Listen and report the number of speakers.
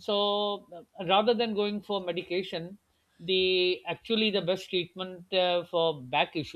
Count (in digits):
1